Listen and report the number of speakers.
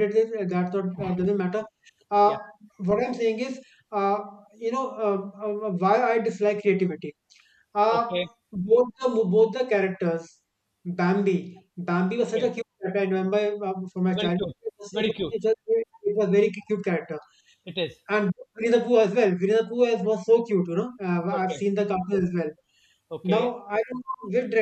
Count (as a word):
two